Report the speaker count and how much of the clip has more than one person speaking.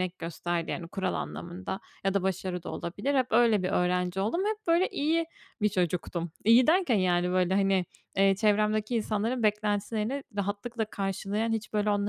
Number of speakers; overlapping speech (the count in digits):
1, no overlap